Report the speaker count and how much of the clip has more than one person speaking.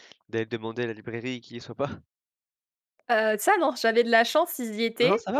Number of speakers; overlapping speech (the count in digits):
2, about 8%